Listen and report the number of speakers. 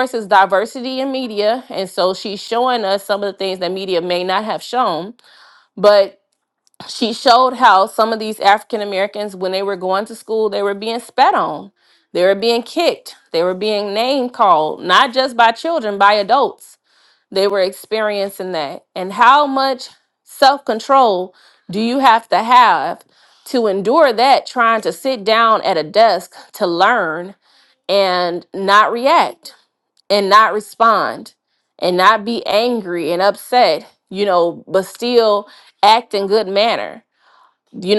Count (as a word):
one